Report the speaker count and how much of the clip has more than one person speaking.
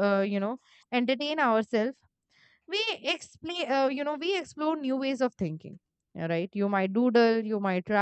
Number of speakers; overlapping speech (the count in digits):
1, no overlap